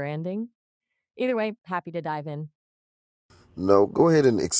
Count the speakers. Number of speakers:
2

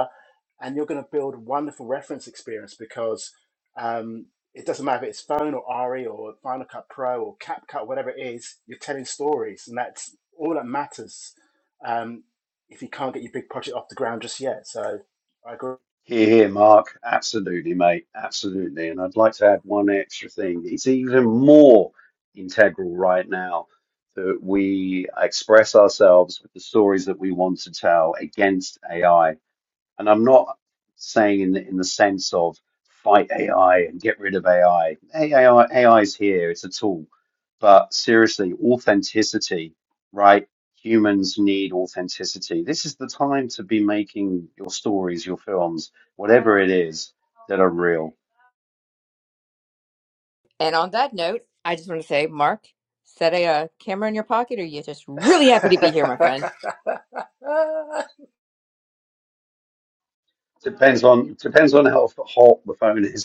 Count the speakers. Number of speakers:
3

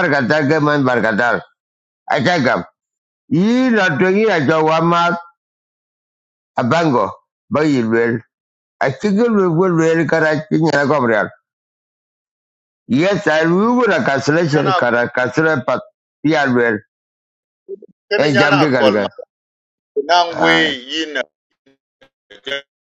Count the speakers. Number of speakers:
2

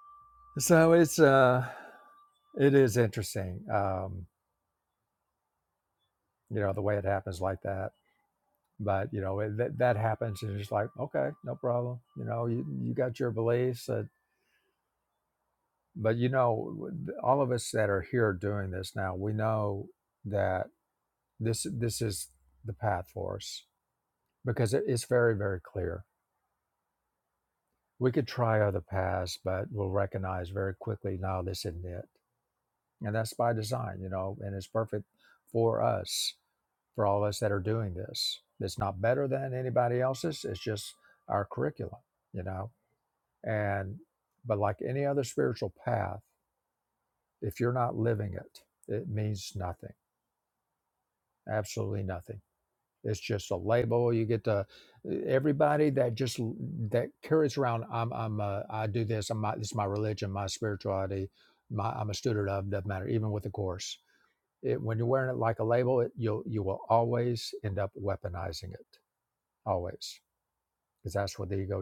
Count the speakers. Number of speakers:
1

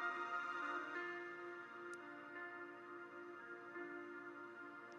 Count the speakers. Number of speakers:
0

